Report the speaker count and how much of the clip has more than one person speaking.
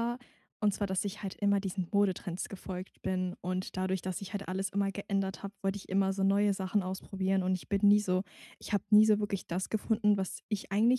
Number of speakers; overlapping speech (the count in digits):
1, no overlap